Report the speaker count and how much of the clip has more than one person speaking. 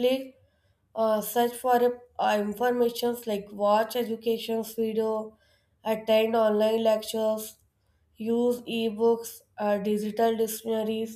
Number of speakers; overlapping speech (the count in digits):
1, no overlap